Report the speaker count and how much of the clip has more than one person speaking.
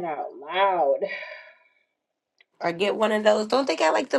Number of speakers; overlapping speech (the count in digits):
2, no overlap